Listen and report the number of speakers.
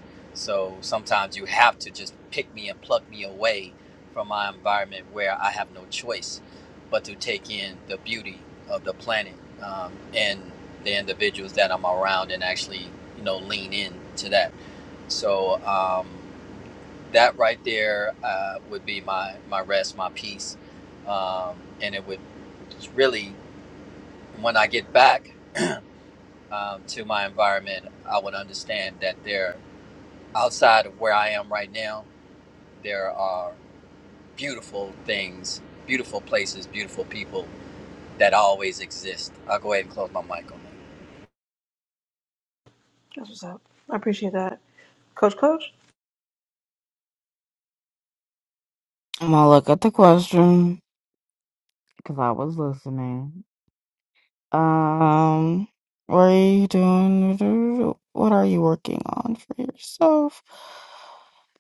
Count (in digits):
3